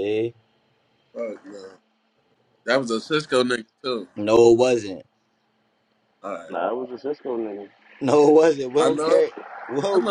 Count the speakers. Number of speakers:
three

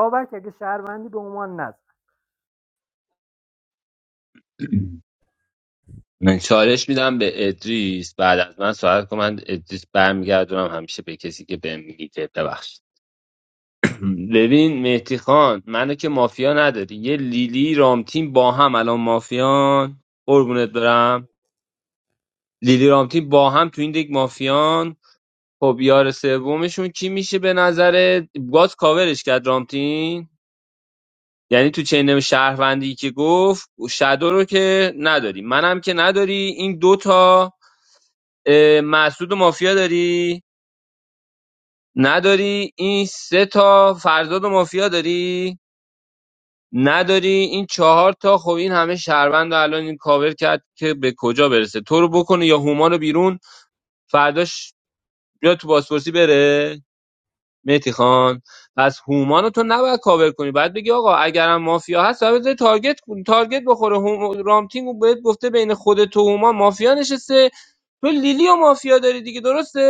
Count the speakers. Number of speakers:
two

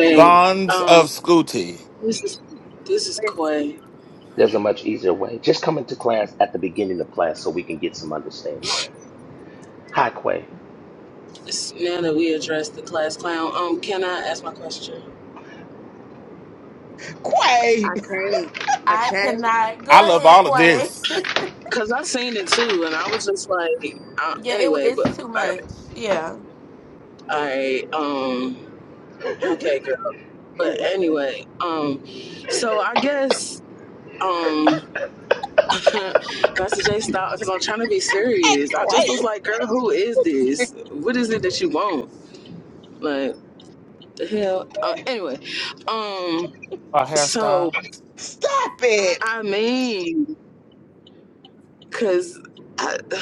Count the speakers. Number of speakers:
six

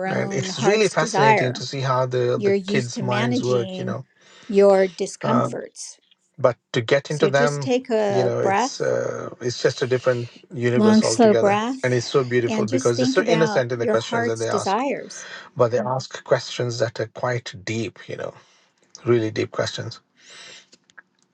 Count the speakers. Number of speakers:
two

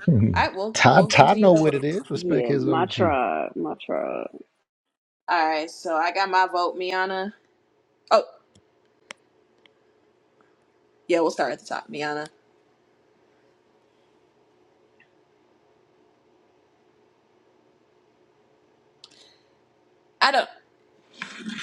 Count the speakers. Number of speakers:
three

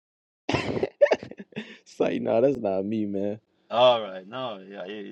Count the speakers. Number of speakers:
two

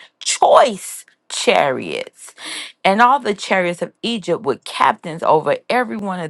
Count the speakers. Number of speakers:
one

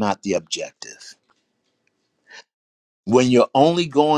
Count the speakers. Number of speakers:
one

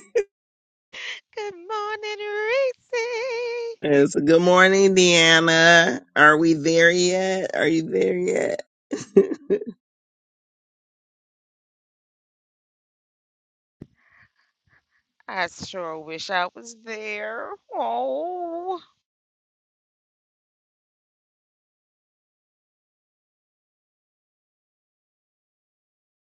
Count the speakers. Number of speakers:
two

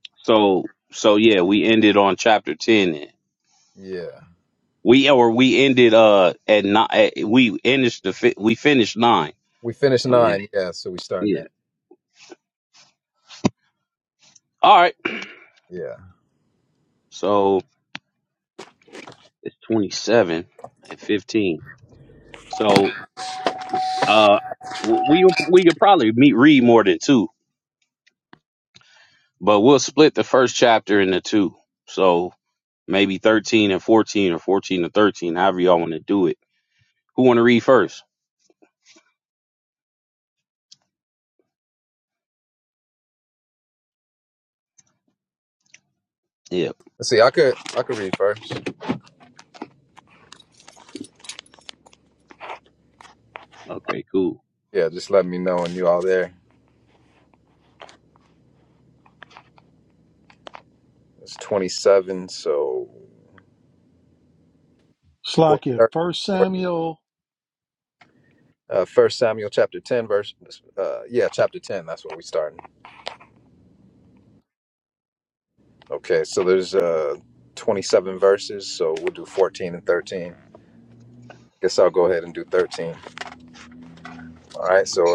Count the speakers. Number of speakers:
three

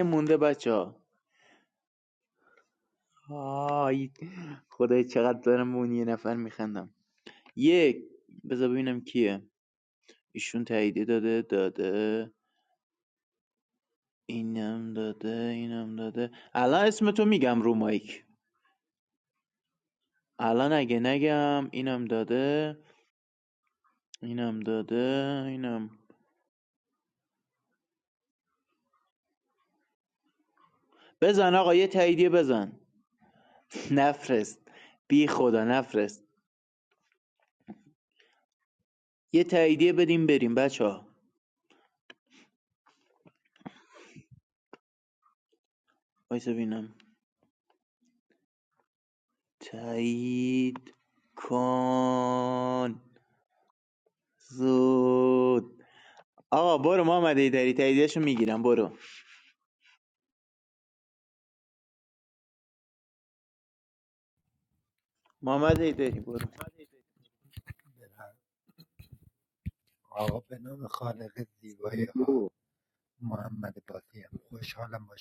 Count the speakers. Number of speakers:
two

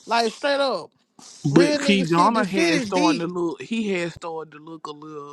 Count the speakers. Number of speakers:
two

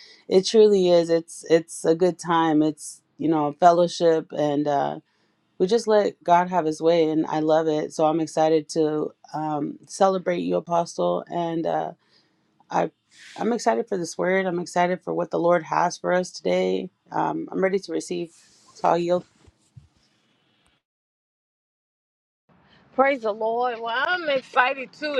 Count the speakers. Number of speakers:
two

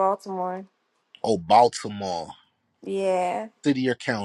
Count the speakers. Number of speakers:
two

